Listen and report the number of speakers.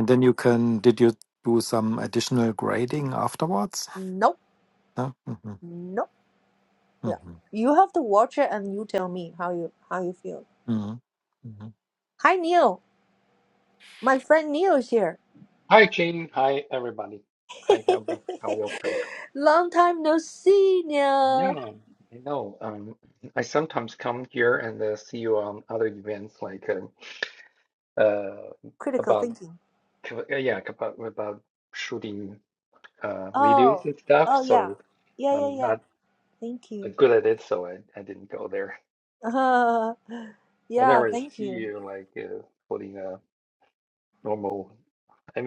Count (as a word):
three